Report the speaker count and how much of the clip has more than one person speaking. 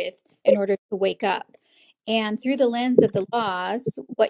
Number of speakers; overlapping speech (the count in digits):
1, no overlap